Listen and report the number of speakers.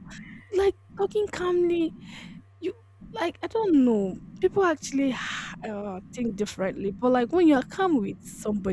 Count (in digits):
1